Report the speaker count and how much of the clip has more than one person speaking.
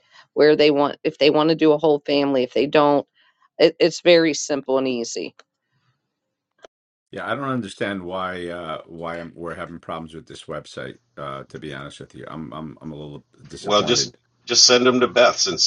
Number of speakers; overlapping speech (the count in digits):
3, about 3%